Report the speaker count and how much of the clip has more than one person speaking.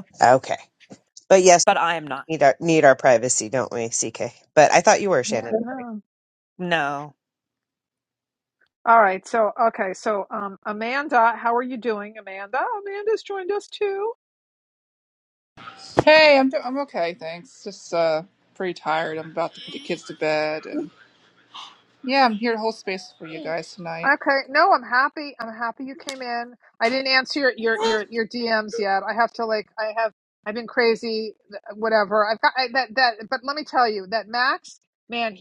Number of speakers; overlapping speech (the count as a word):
four, about 1%